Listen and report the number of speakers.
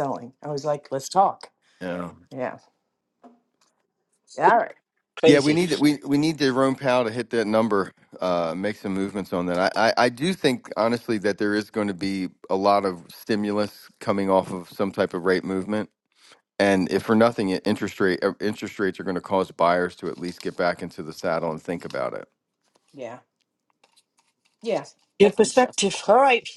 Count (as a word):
three